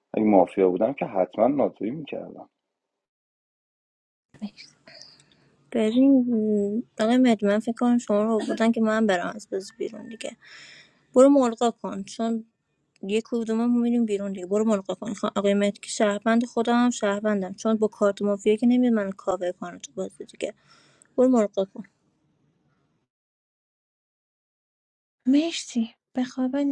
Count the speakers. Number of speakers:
three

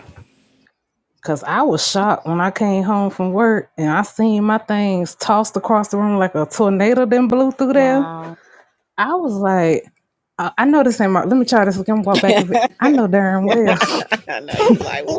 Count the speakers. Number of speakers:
two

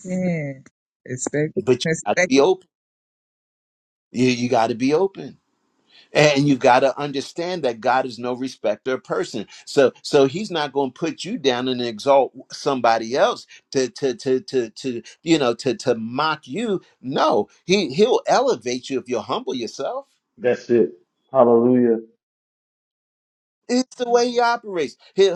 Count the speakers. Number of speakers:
three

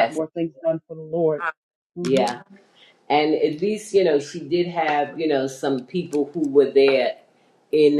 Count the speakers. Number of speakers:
two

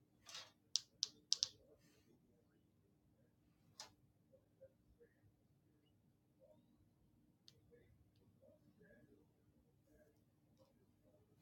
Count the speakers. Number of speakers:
zero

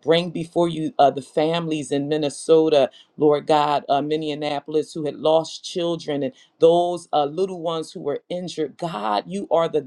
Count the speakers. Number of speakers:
one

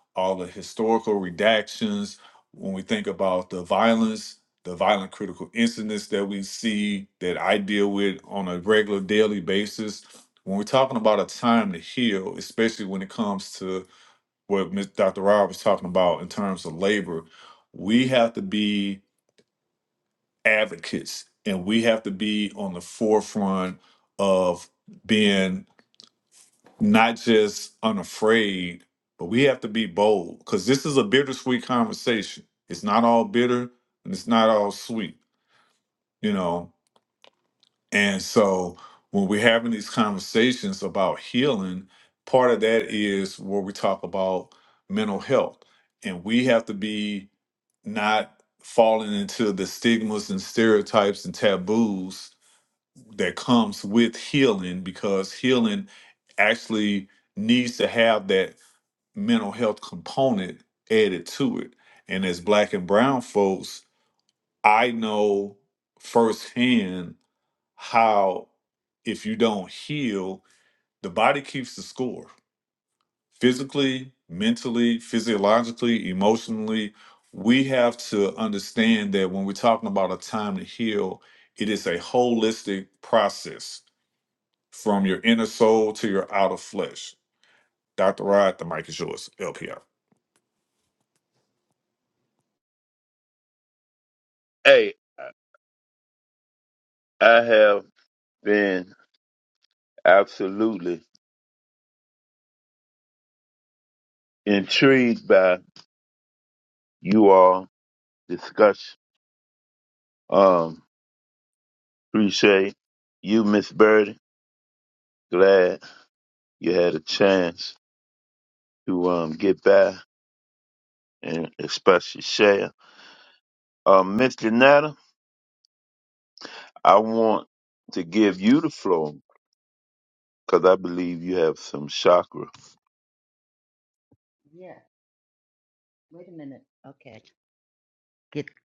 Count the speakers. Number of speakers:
three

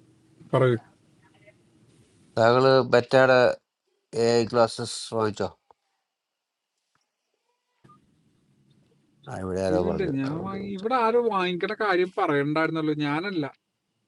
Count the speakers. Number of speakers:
two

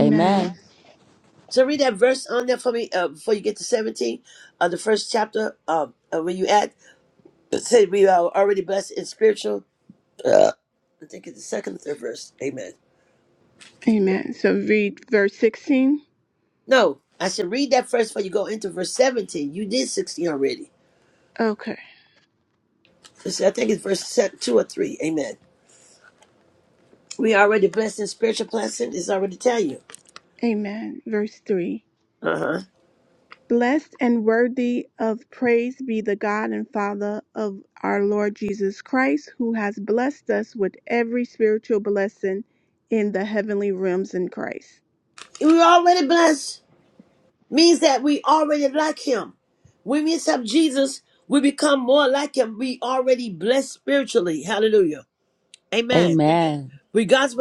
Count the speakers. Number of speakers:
three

